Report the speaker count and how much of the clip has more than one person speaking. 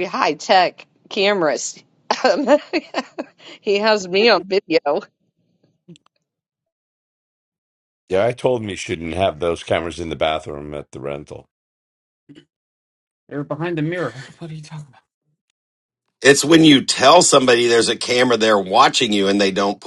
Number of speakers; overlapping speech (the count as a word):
four, no overlap